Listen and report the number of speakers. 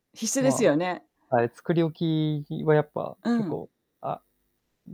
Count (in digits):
2